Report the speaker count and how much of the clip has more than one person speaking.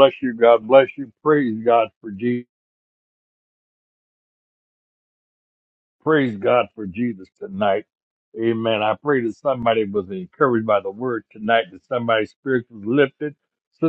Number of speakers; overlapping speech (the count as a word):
one, no overlap